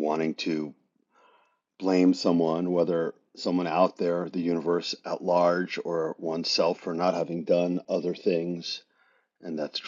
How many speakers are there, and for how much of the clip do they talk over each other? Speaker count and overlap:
1, no overlap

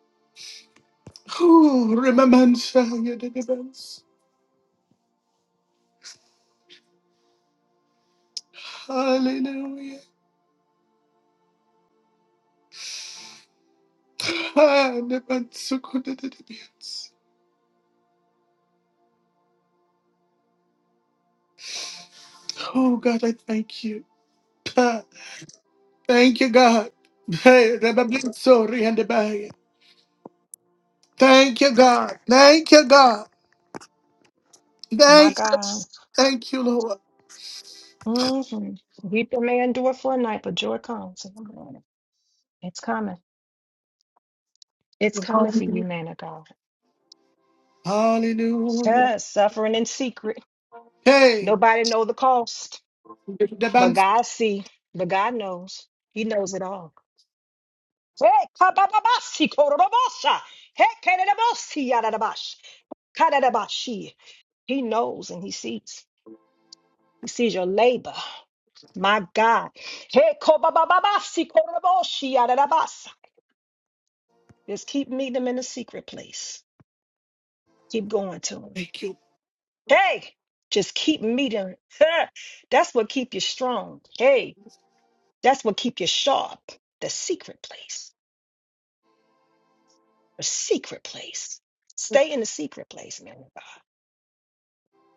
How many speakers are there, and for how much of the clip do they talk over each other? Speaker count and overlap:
2, about 1%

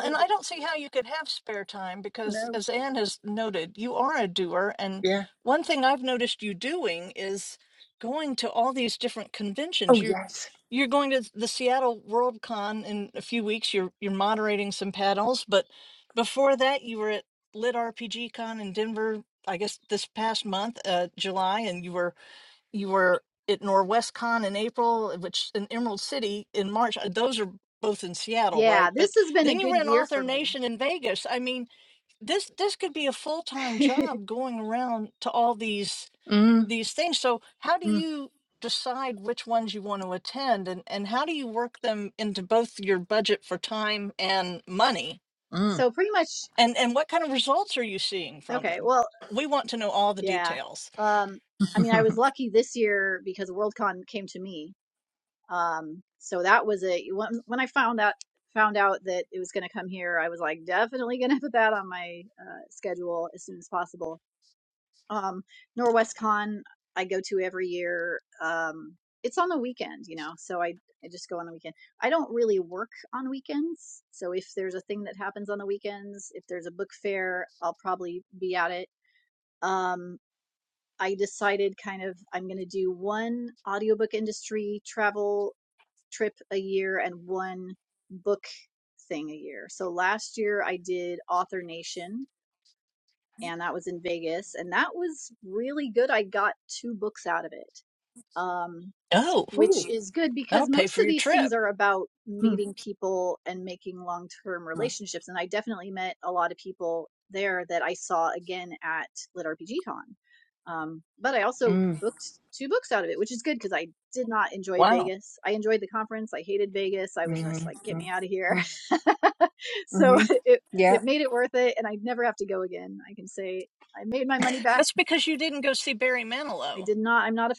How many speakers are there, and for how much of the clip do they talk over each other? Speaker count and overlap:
3, about 6%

